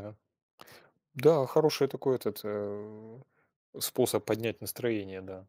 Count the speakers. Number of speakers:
one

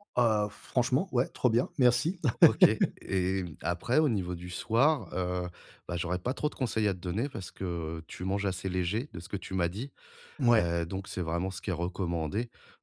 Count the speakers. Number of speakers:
two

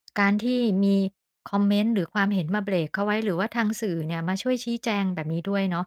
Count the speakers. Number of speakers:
one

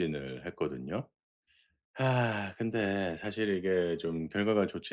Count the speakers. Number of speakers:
one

